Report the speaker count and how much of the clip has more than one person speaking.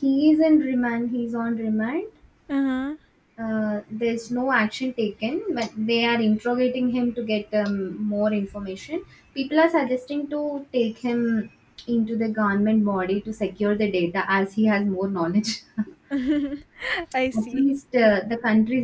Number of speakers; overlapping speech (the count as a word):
two, about 4%